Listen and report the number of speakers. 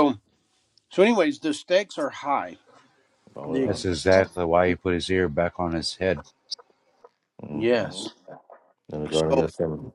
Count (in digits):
3